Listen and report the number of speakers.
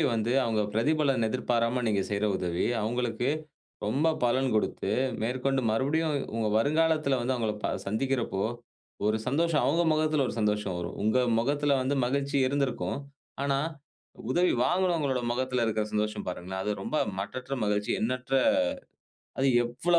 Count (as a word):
one